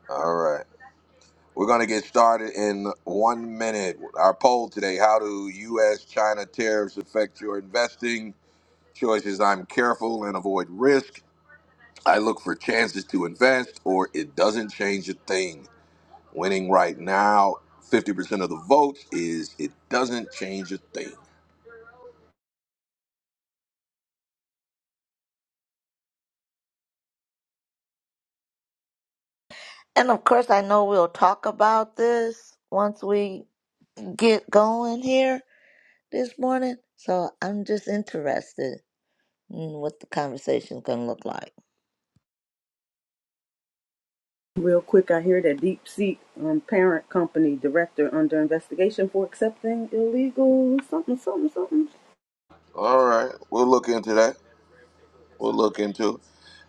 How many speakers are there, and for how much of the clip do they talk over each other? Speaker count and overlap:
3, no overlap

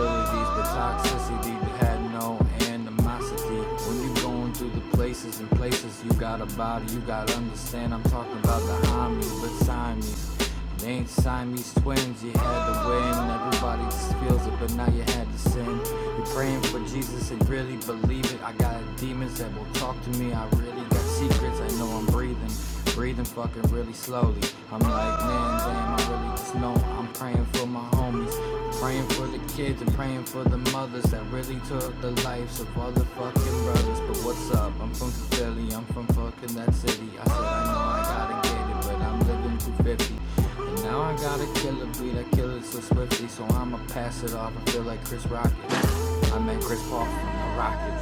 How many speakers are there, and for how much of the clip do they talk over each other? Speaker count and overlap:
1, no overlap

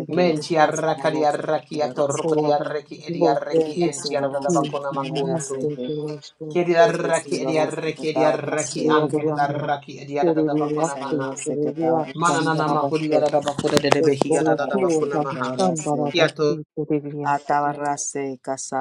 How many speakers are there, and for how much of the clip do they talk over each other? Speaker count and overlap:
3, about 72%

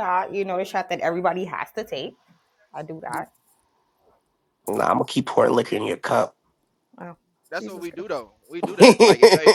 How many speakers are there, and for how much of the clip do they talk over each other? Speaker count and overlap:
3, about 5%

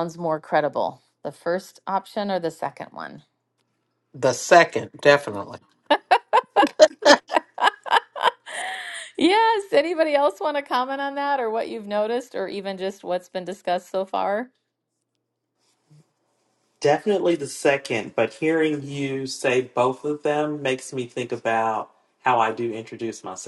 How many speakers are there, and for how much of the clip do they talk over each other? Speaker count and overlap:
3, no overlap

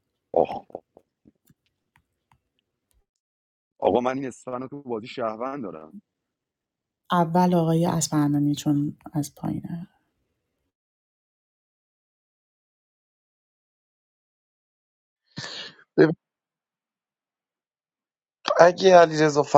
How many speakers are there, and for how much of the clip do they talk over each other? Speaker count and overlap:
3, no overlap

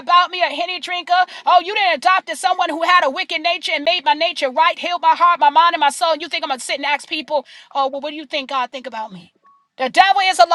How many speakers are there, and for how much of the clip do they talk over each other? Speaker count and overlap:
1, no overlap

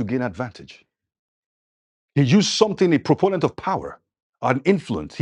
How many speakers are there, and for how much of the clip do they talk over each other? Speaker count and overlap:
1, no overlap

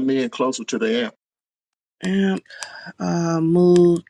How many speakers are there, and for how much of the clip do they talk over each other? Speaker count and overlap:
2, no overlap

